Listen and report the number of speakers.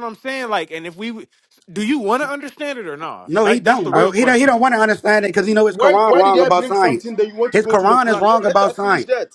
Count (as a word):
three